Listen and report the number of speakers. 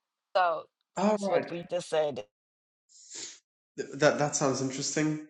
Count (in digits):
2